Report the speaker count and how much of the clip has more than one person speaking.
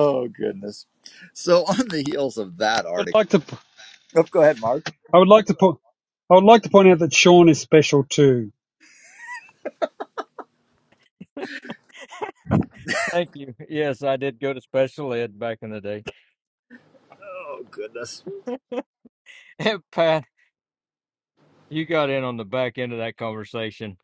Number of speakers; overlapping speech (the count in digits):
3, about 1%